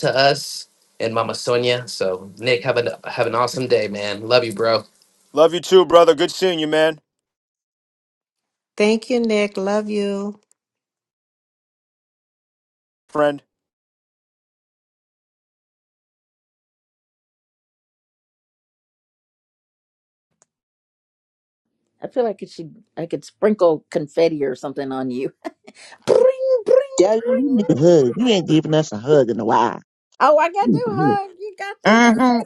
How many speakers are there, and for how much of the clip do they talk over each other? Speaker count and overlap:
5, about 4%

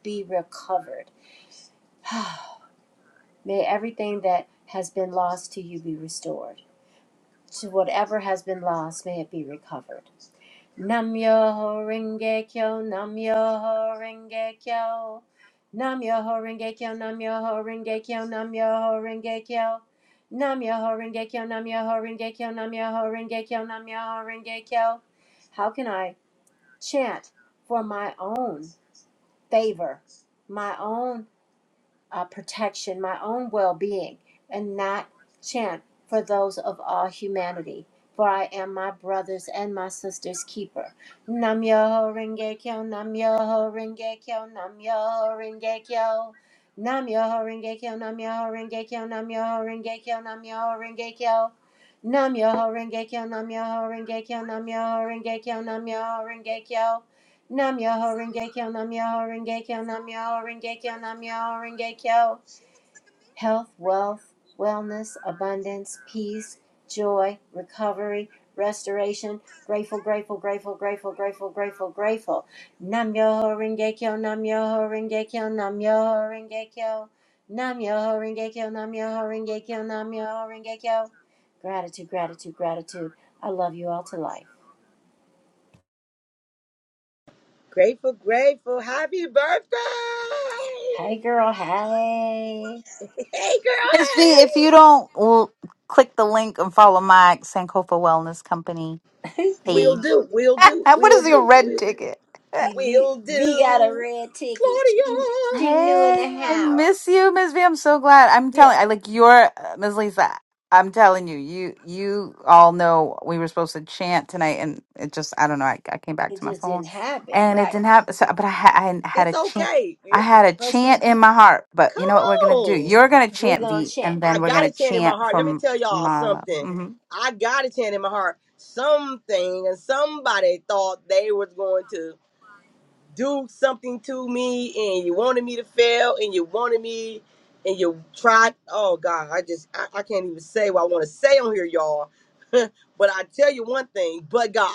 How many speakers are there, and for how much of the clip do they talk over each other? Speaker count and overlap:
3, about 8%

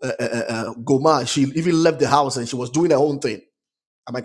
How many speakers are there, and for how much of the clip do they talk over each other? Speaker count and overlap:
1, no overlap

